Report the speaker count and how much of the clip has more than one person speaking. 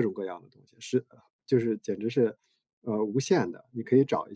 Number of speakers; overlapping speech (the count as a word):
one, no overlap